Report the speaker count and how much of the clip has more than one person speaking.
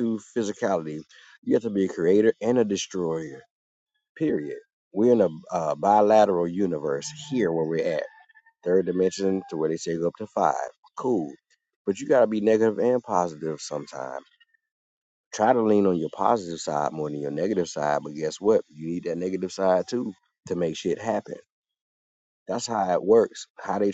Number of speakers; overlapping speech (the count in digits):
1, no overlap